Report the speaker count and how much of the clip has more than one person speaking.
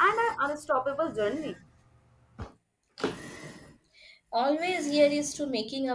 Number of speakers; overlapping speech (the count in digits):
2, no overlap